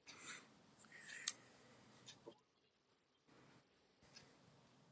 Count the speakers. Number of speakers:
0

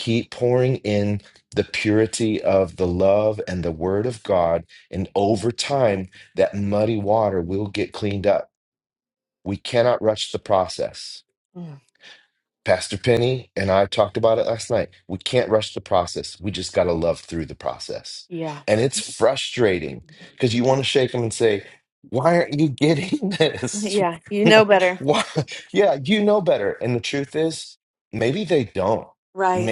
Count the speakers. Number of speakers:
2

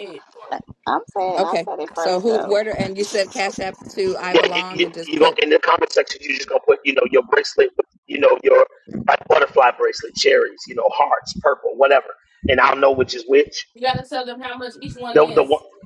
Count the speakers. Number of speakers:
4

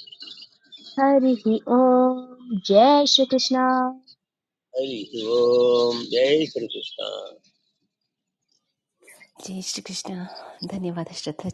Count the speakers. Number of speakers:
3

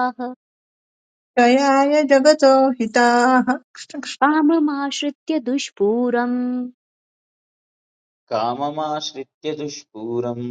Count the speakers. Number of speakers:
3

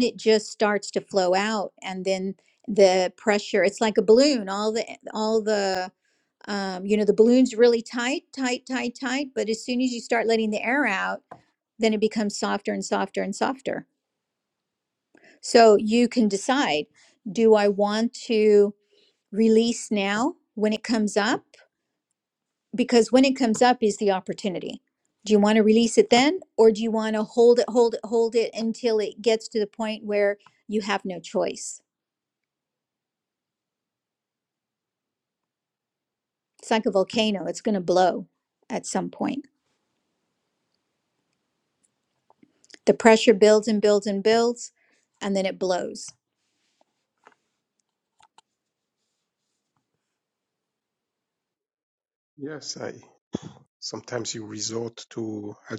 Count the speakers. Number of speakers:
2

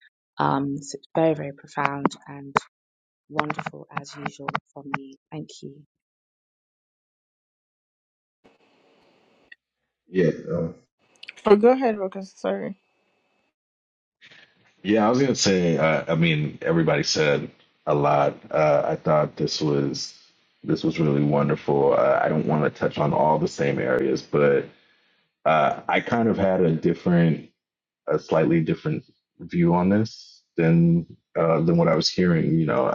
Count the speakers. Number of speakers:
3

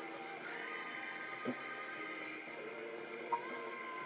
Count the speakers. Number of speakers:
0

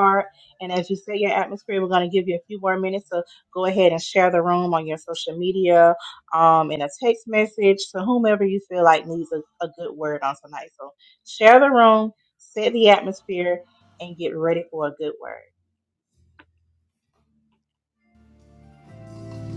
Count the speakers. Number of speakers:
1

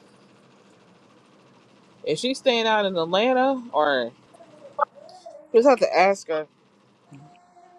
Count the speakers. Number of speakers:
1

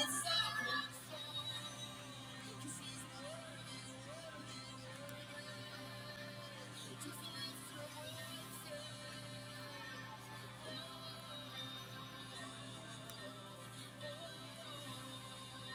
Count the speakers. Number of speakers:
0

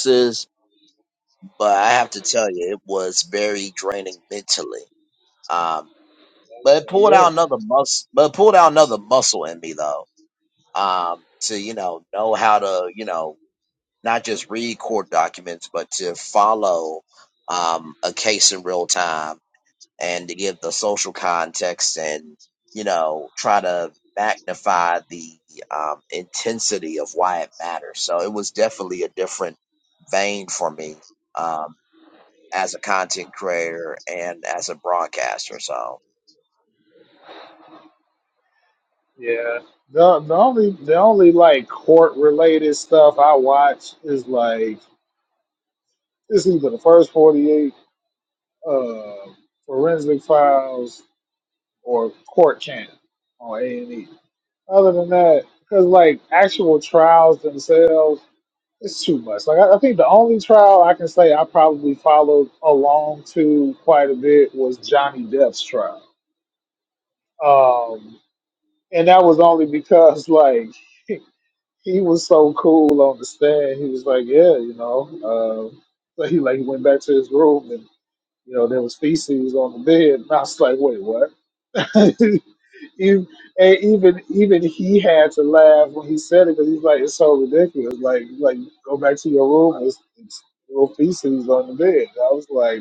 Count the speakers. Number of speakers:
2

